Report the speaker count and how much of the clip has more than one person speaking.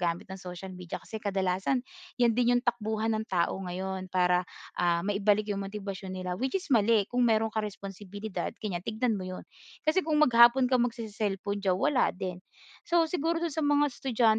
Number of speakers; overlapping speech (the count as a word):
one, no overlap